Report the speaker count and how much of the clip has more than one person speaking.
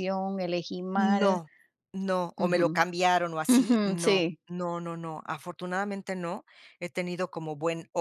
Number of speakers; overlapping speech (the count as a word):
two, about 22%